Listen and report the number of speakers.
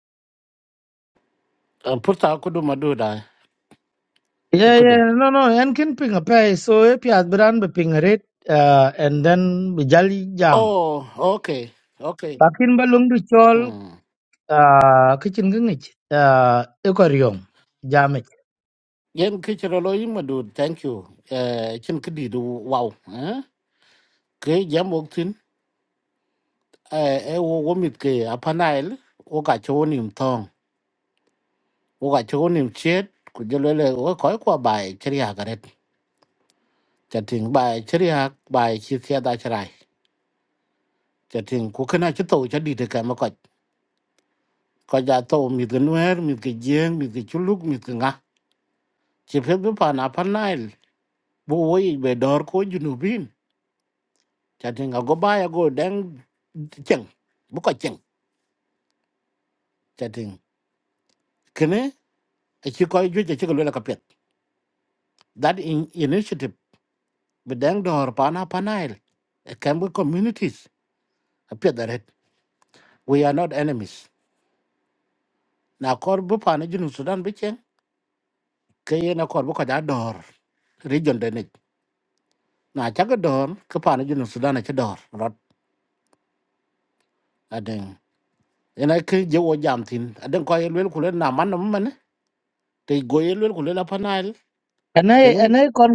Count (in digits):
2